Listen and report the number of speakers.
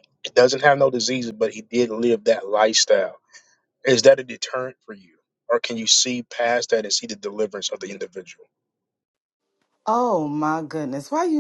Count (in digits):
2